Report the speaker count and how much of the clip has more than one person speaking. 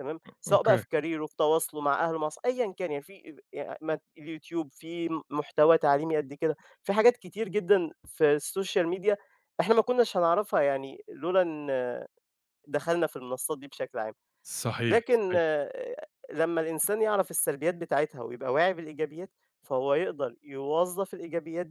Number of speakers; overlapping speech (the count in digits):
2, about 4%